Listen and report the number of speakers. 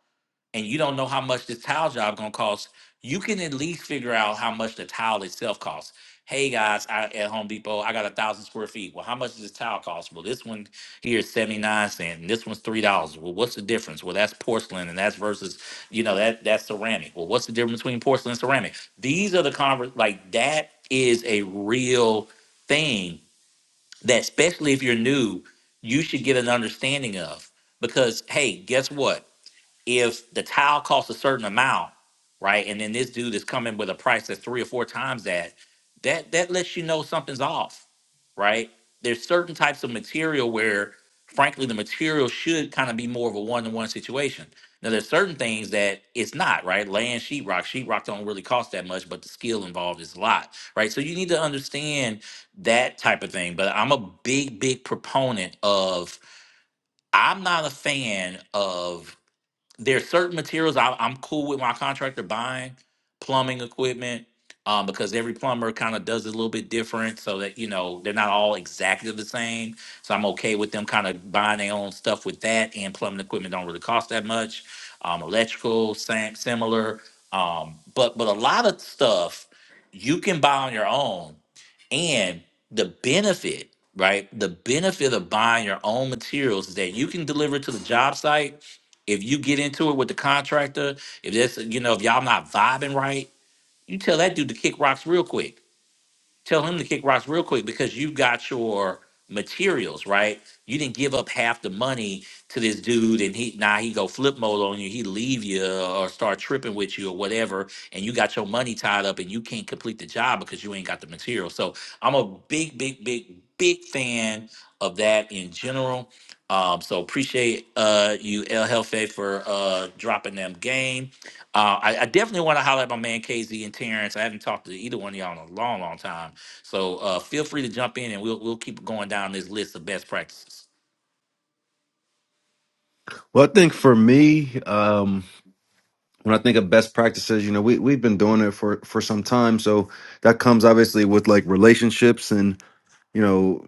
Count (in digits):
2